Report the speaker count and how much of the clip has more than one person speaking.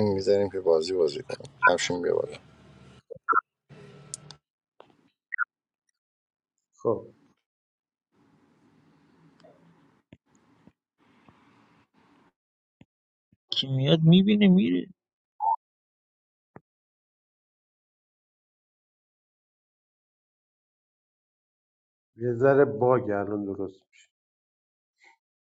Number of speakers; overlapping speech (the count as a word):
three, no overlap